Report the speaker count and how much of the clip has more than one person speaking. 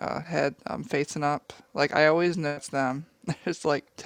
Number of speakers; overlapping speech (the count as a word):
one, no overlap